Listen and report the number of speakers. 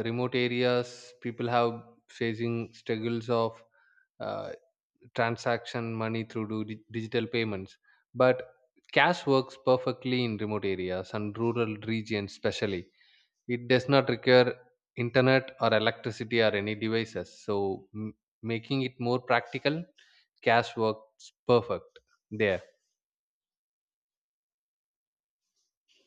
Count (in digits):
1